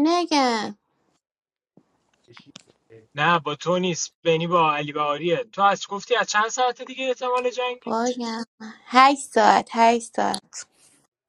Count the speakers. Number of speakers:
2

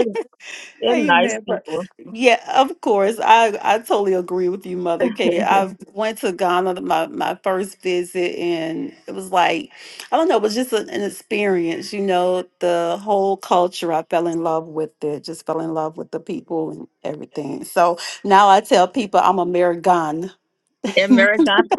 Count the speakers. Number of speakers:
2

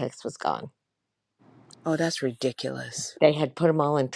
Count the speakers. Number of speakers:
2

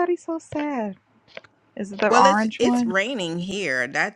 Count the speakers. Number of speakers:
2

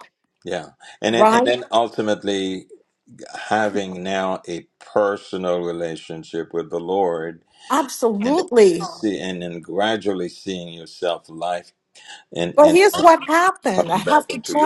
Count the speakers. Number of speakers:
2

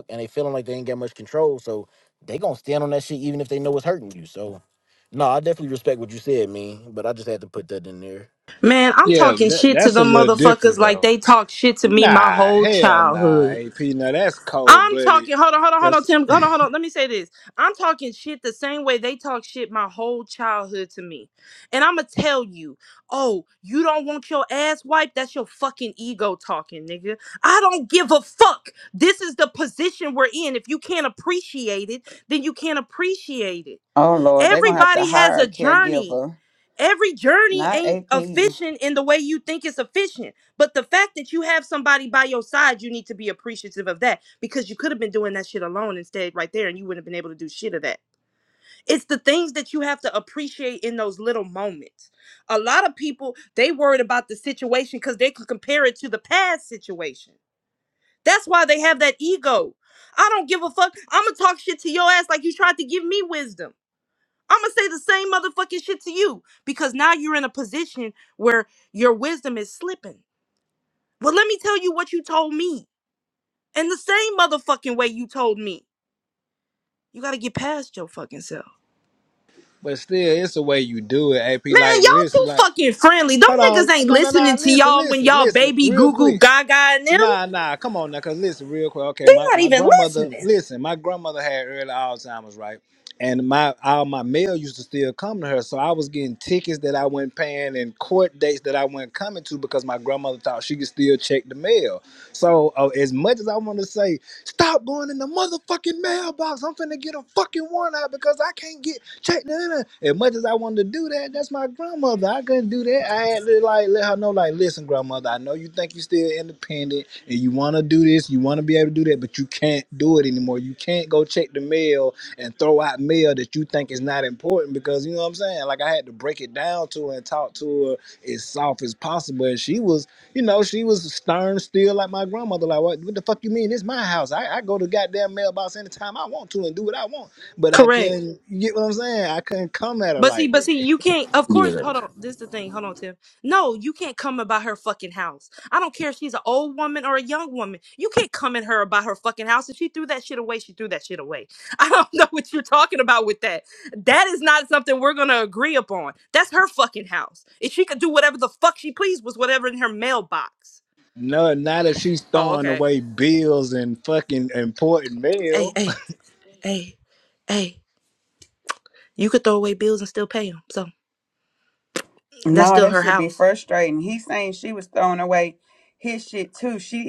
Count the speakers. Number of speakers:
4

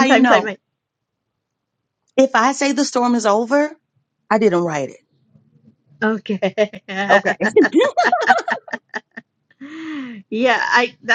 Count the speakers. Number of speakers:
2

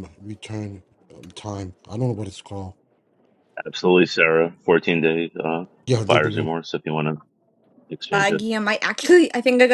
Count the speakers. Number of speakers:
3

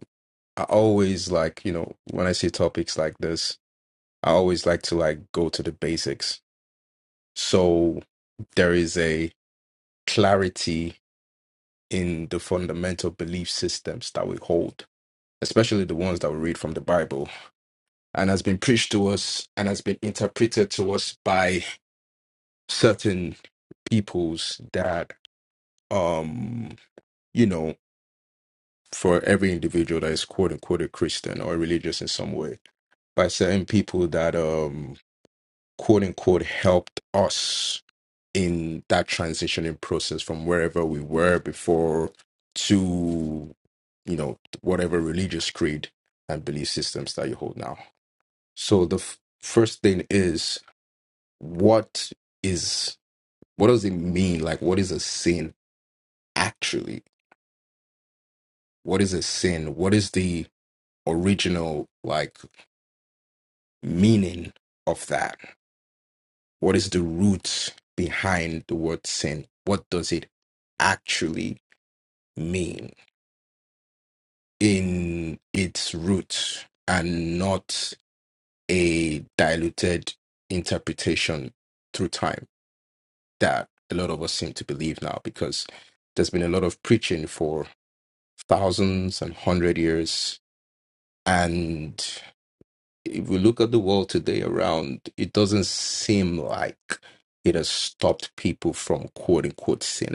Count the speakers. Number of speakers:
1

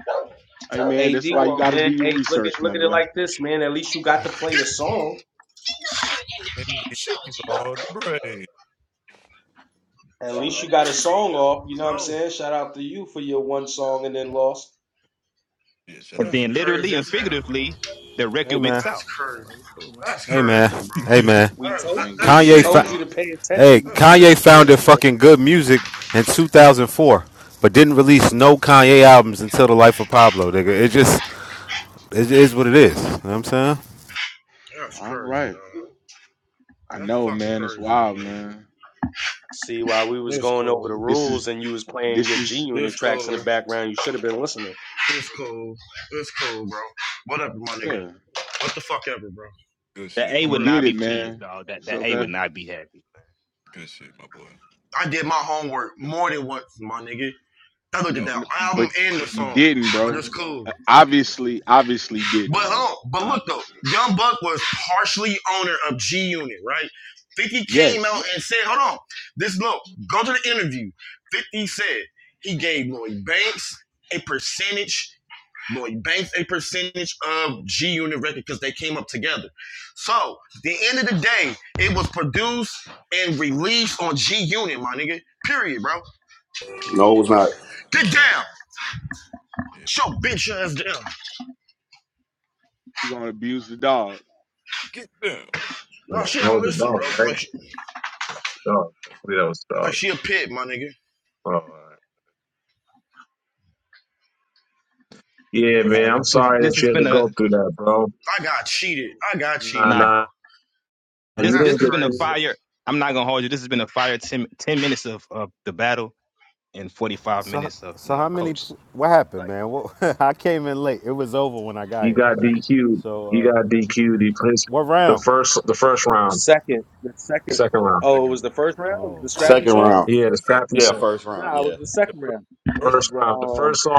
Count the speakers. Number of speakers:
8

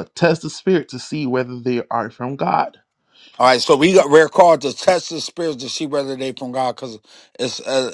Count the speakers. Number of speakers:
2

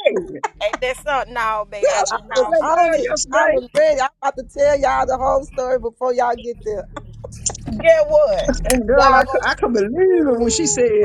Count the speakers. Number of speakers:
3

